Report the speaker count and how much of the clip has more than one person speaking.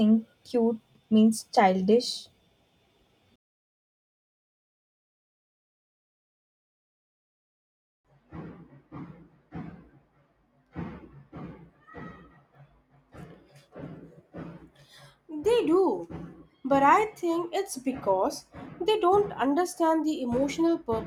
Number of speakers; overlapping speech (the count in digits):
2, no overlap